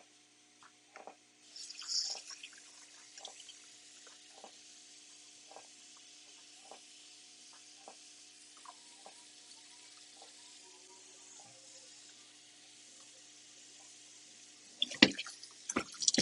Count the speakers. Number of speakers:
0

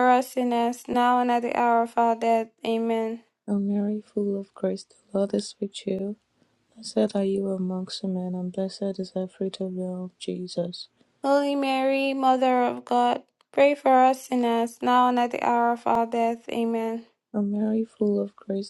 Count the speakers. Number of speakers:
2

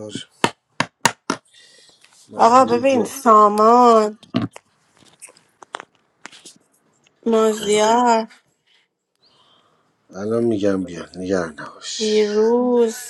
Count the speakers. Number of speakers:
2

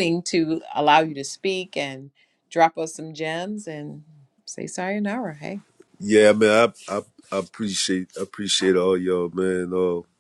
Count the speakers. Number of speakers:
2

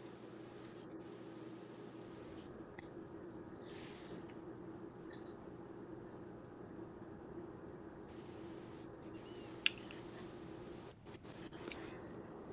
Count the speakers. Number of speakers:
0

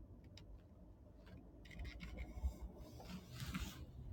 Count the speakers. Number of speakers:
0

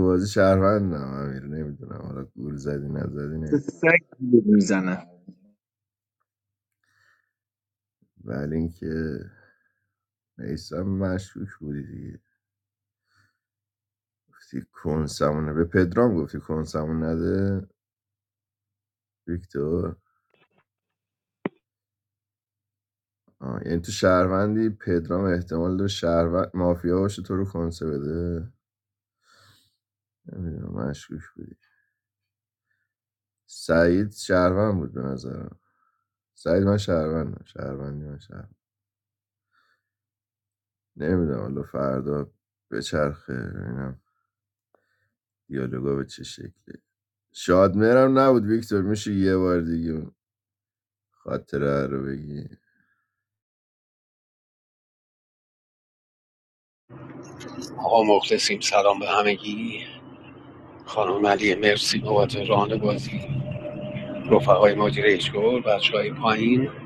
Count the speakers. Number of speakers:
3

